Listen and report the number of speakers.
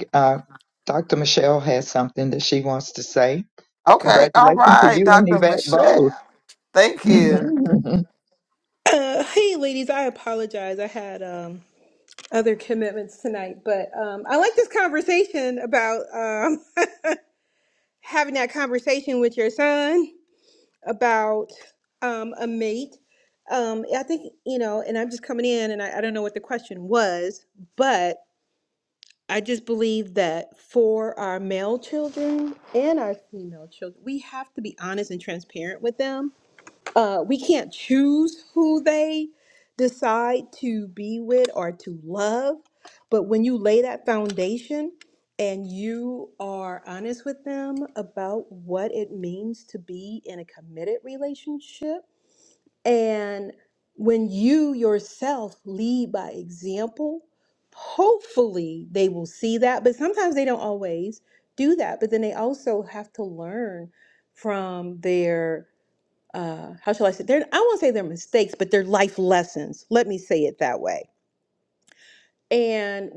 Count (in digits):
3